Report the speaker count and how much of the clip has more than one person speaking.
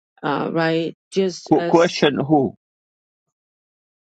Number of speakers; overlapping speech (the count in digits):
2, about 7%